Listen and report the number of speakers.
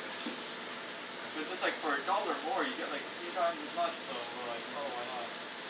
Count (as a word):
one